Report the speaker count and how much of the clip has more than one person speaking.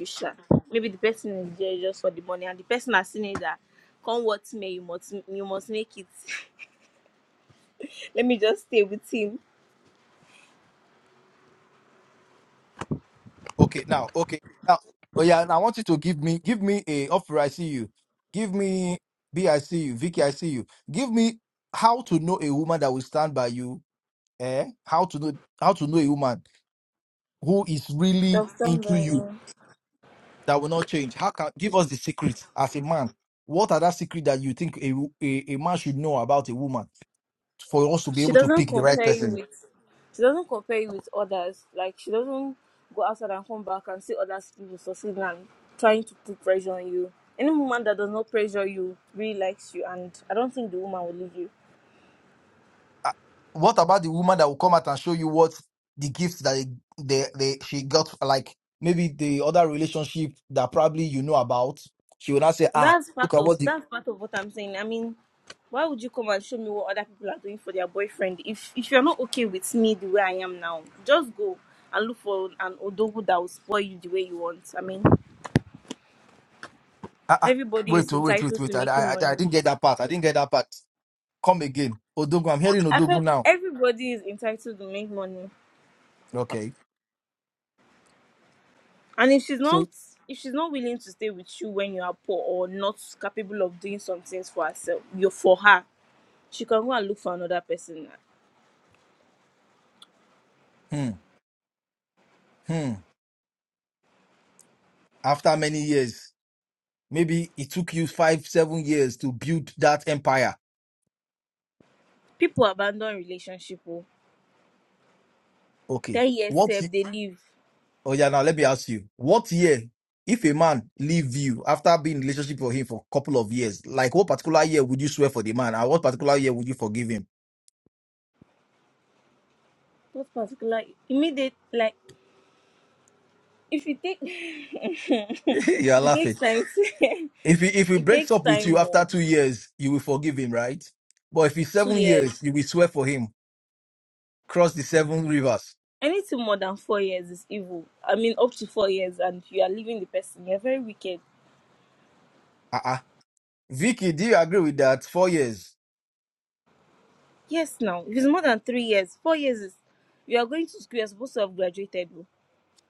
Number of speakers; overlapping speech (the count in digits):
2, about 5%